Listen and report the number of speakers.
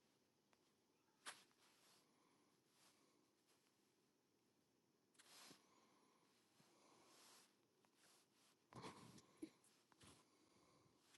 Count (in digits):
0